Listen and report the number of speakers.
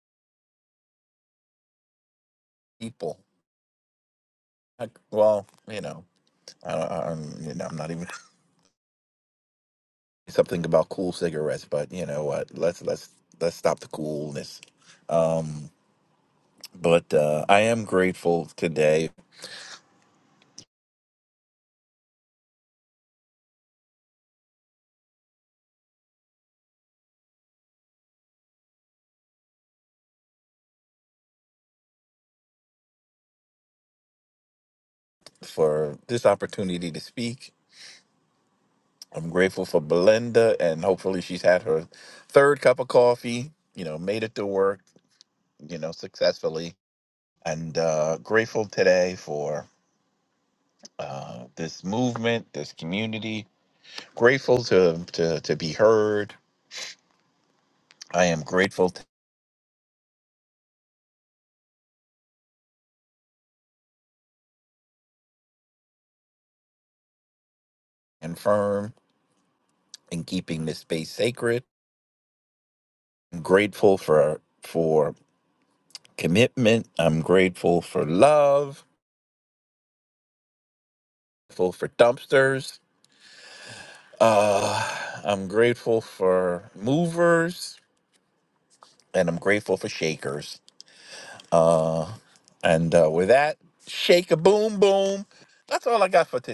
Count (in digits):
1